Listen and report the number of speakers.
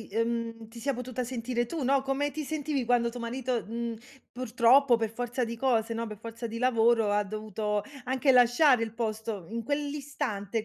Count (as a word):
one